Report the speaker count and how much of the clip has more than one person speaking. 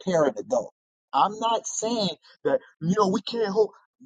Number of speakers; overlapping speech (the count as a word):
one, no overlap